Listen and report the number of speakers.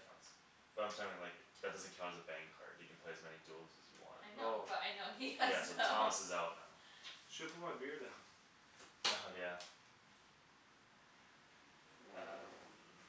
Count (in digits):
3